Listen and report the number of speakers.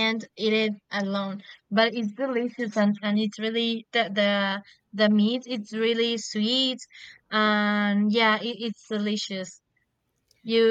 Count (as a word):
one